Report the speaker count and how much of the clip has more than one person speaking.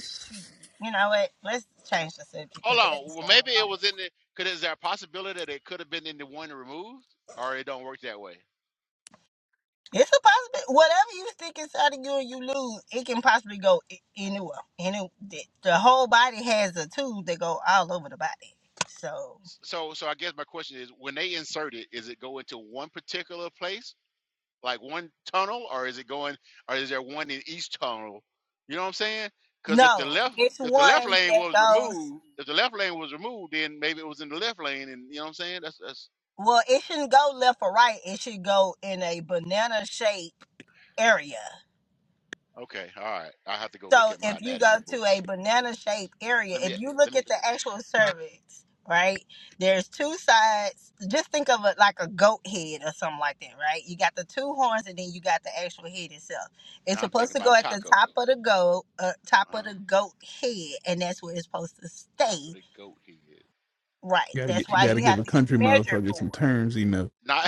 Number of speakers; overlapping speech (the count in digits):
3, about 13%